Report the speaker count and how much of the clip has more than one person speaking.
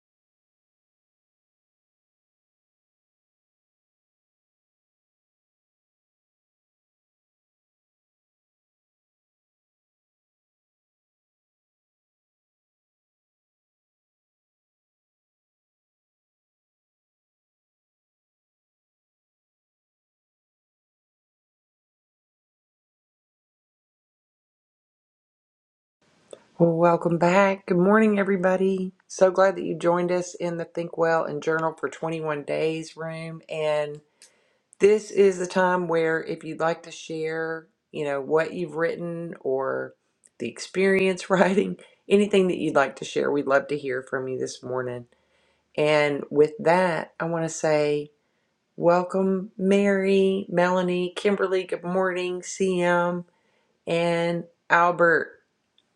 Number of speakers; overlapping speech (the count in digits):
1, no overlap